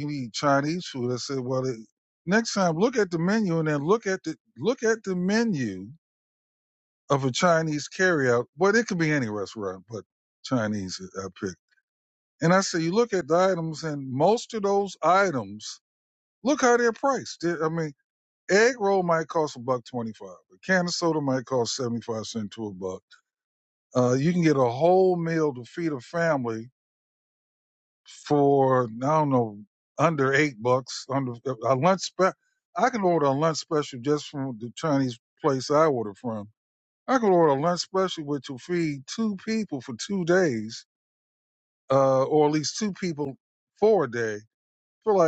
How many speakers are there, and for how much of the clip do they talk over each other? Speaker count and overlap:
one, no overlap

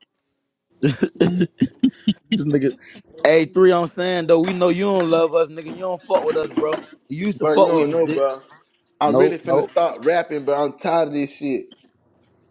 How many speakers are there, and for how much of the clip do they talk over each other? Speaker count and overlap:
two, about 12%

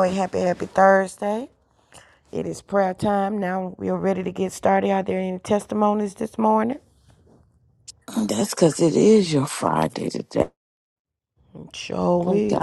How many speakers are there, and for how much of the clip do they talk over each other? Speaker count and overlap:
two, about 3%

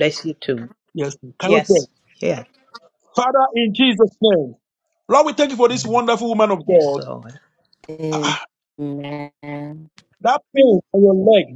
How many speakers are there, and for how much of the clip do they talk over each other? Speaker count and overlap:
three, about 8%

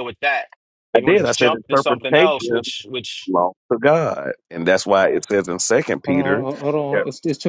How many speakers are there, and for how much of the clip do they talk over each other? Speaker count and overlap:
three, about 28%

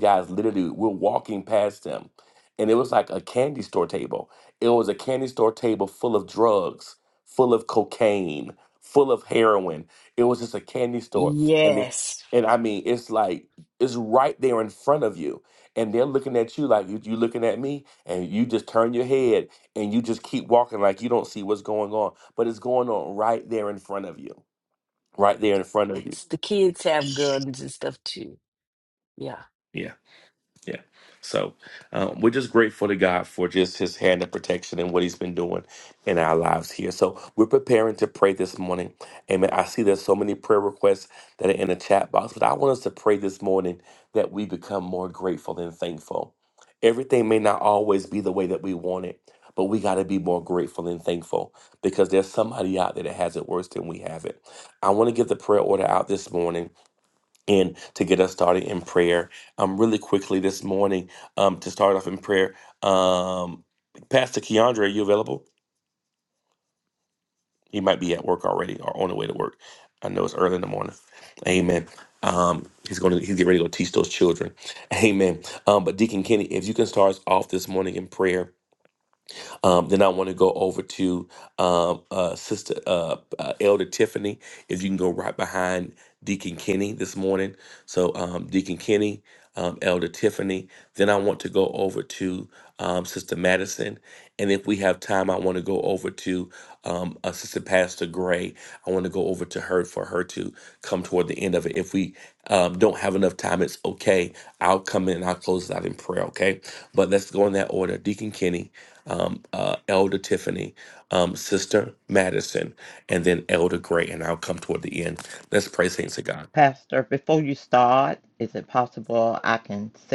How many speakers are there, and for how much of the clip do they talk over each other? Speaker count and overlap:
three, about 1%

